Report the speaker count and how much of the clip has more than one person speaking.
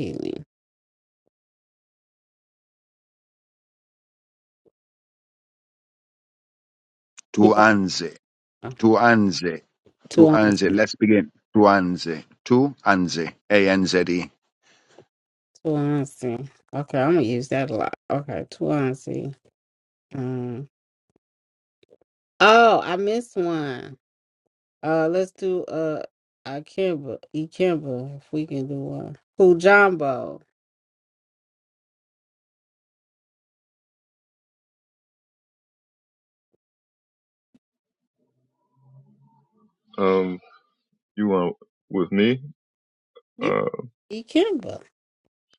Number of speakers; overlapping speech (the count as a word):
three, about 2%